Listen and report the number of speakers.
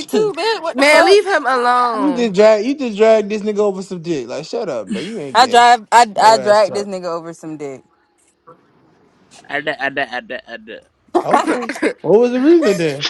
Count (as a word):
four